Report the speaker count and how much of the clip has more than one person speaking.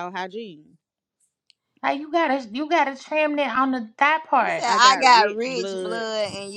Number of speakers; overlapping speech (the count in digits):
3, about 25%